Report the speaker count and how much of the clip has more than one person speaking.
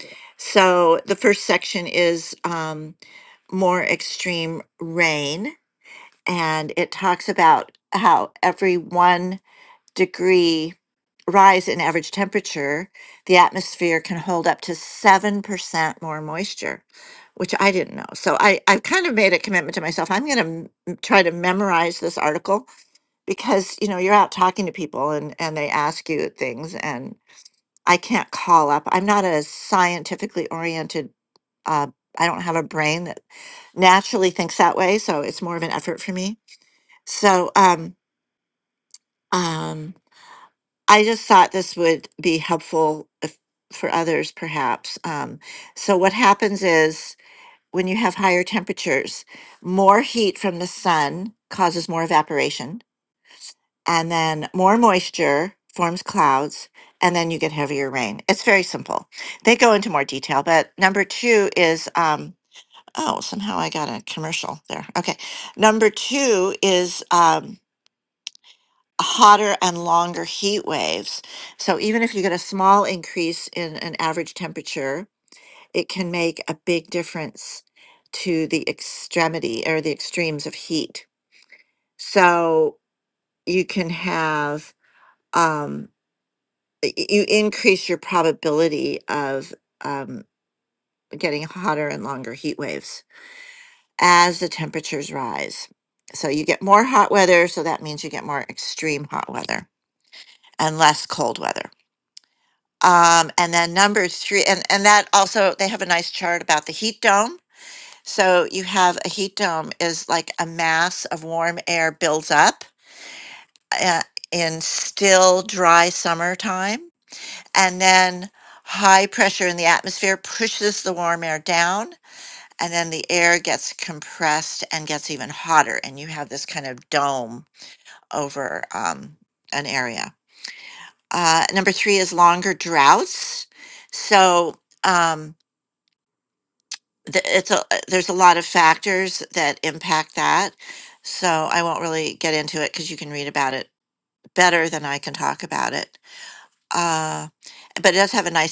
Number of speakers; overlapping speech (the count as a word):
one, no overlap